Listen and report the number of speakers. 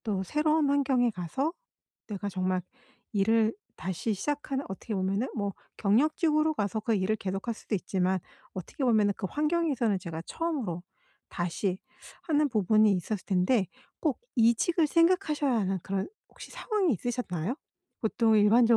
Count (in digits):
1